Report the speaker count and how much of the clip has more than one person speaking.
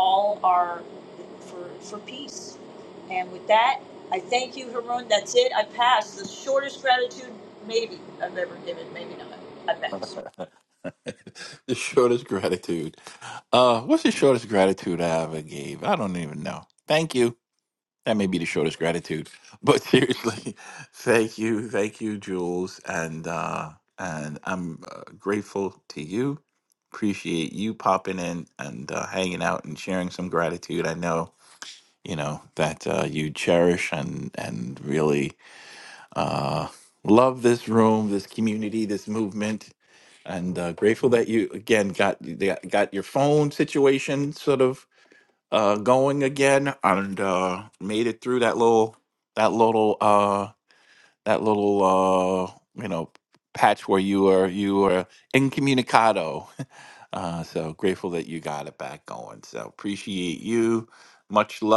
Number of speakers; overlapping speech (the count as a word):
two, no overlap